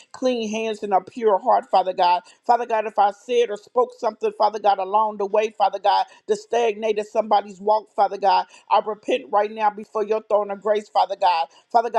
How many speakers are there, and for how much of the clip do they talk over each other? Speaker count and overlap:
one, no overlap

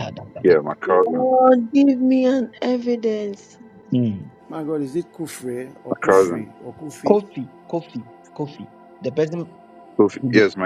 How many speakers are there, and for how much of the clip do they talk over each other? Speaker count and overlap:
four, about 12%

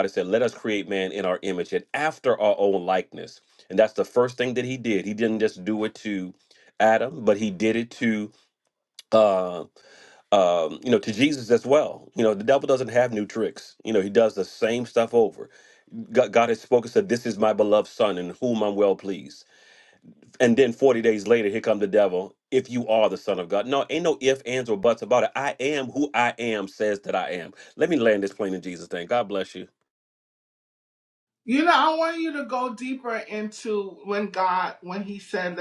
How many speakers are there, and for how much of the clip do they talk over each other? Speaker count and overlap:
two, no overlap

